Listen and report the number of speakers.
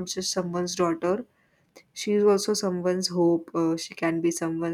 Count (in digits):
1